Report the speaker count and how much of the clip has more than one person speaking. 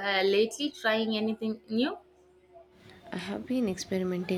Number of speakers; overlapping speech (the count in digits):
2, no overlap